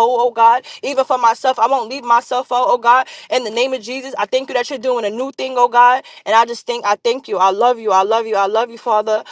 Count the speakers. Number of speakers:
one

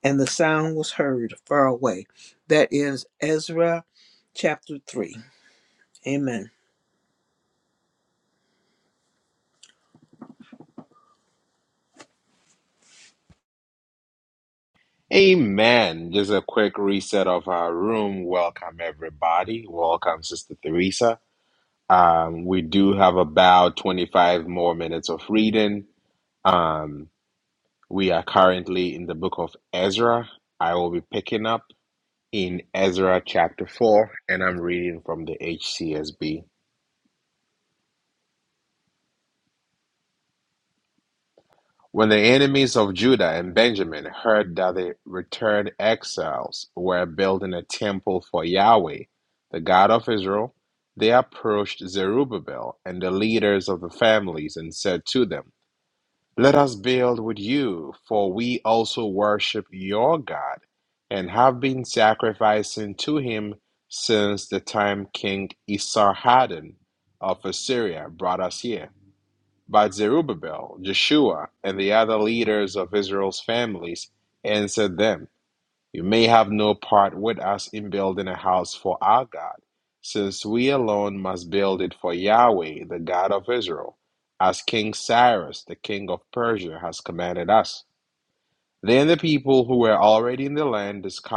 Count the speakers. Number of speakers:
two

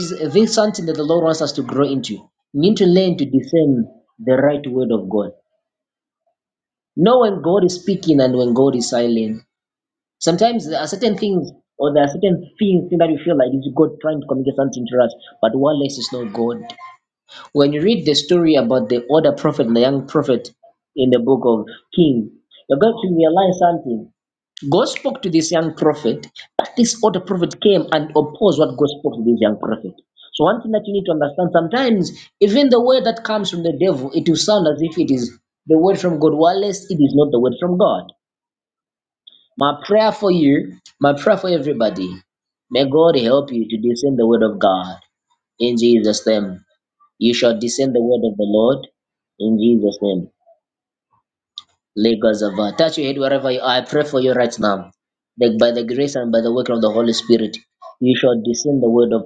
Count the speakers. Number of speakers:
one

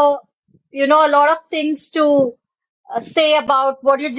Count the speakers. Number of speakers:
one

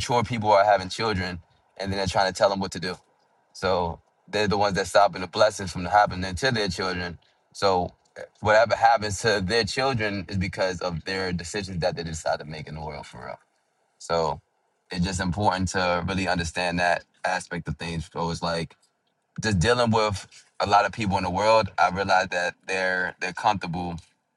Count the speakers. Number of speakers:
one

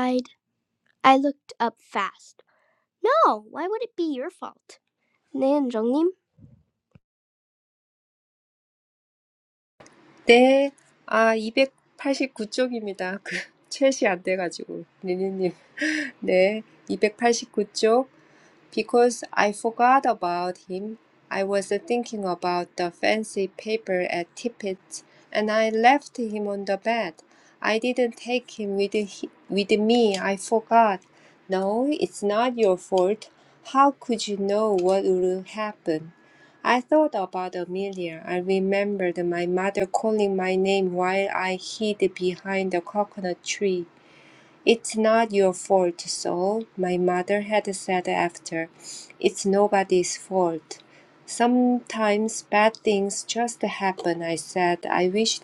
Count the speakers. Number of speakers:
two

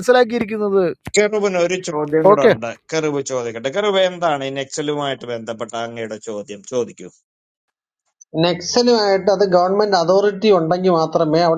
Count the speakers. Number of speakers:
three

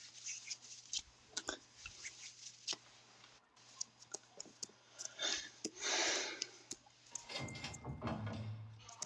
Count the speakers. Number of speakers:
zero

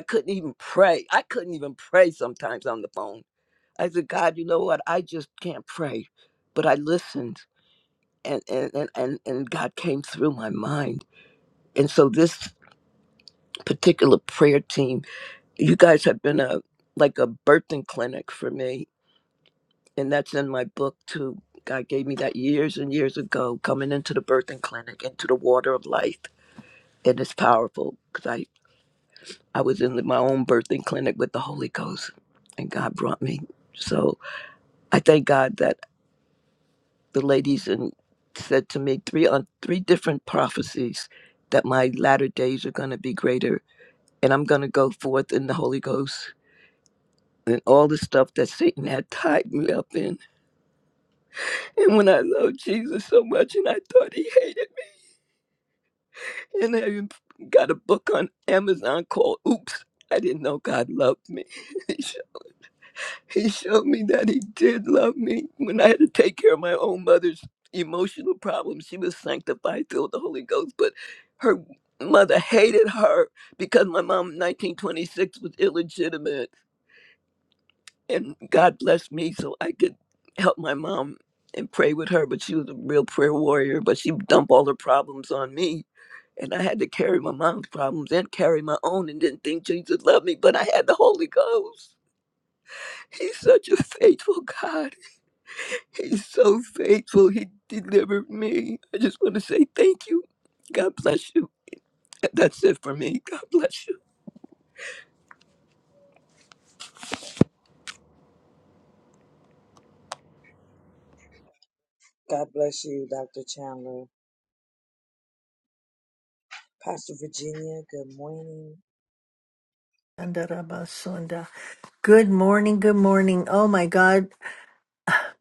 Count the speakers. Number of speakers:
three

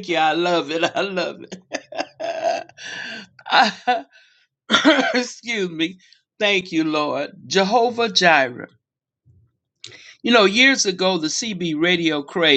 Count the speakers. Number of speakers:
one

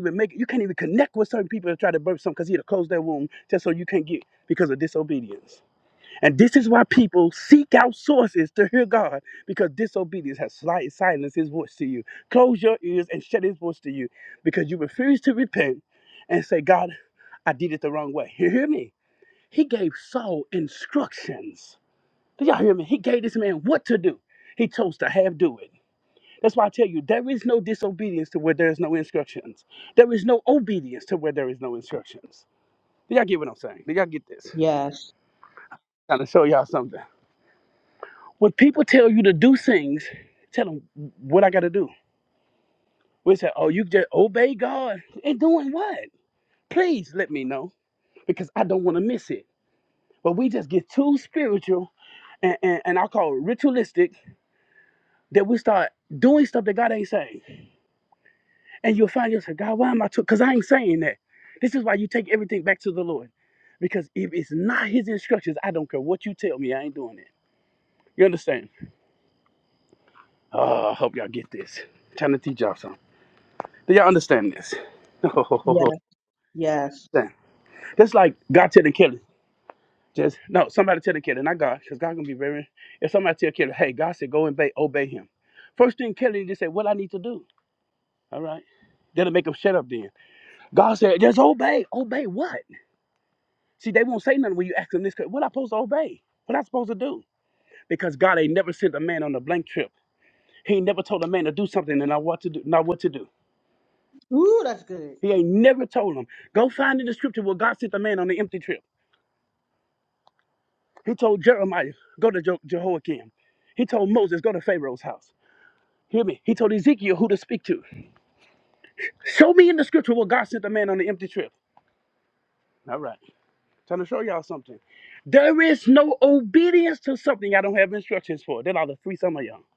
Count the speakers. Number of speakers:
two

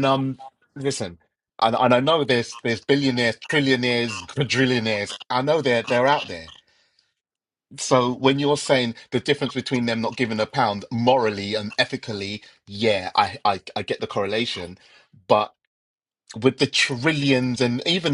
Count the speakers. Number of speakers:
one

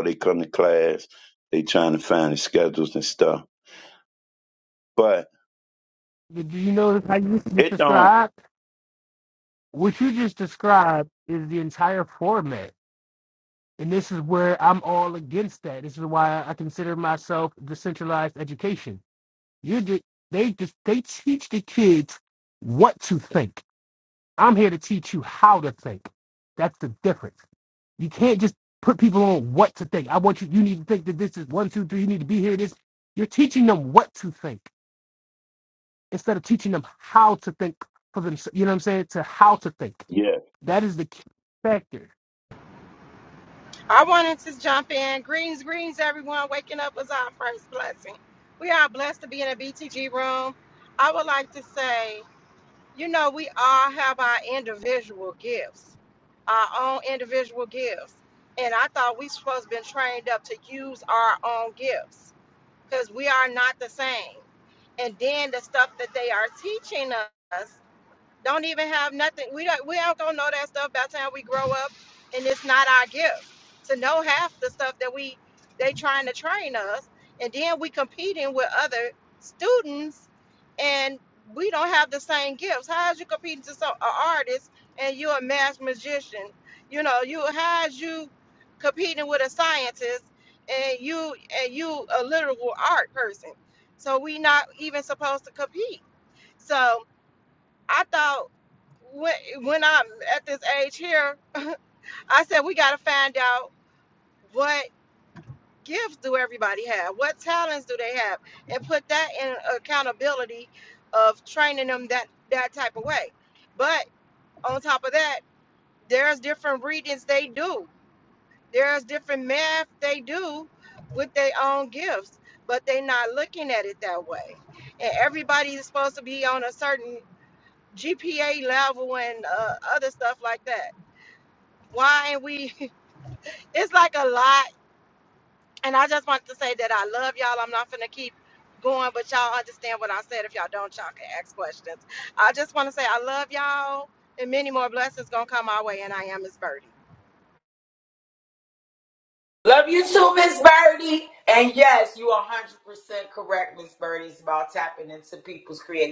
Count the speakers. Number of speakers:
four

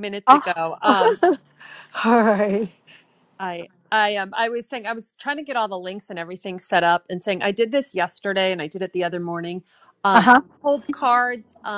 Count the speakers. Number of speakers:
two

